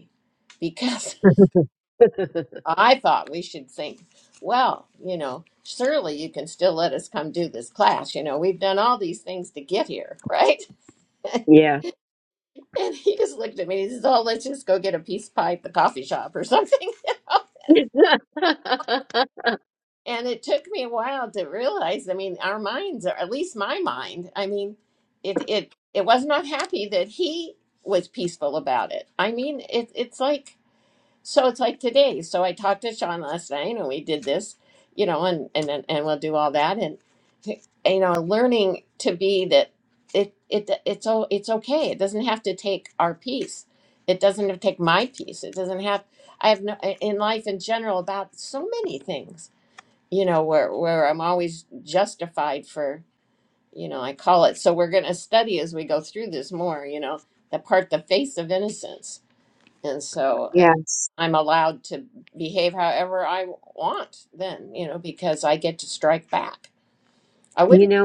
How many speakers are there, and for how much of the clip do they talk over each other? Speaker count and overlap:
two, about 1%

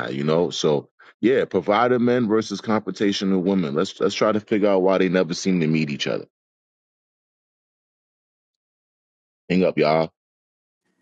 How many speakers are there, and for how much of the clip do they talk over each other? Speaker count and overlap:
one, no overlap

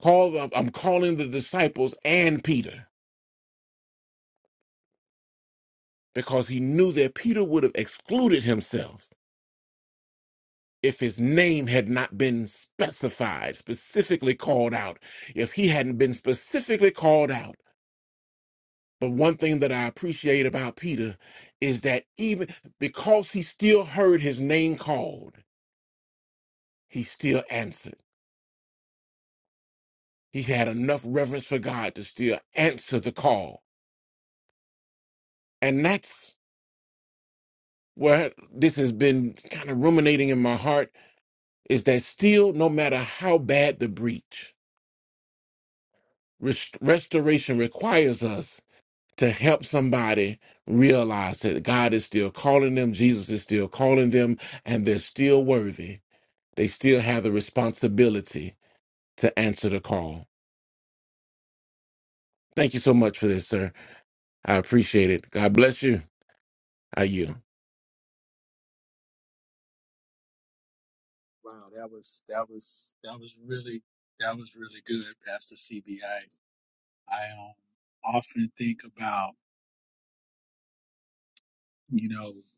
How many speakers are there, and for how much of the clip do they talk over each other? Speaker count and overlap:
two, no overlap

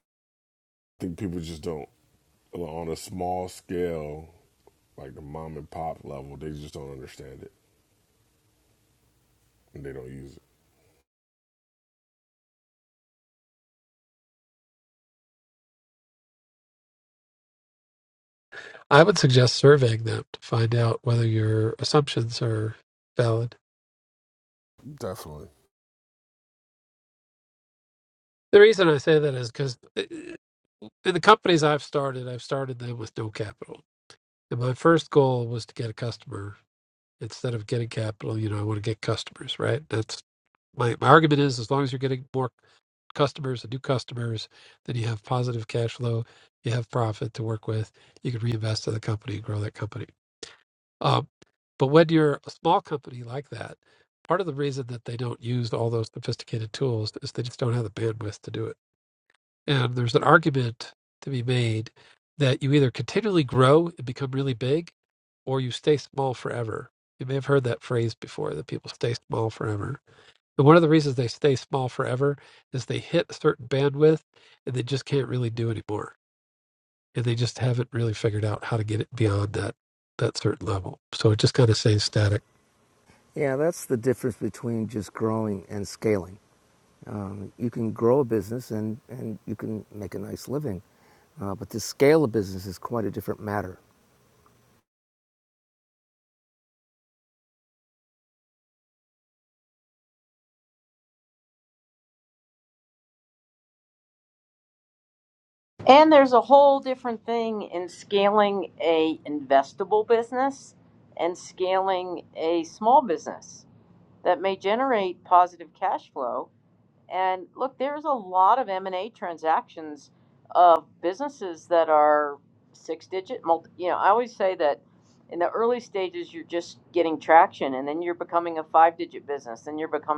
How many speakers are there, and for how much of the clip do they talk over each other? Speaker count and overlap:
four, no overlap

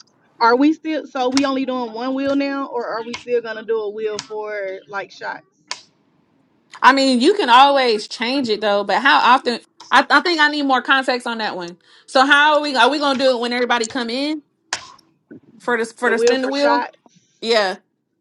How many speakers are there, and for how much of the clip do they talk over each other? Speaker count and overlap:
two, about 4%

